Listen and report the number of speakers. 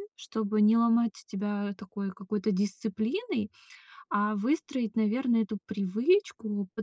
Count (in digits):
1